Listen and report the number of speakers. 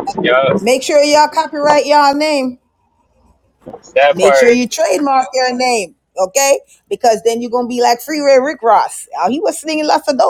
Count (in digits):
2